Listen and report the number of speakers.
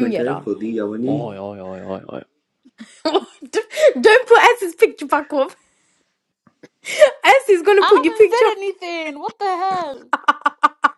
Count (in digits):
4